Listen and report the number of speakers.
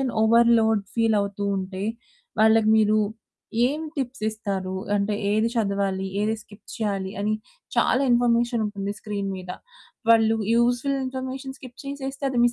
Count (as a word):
one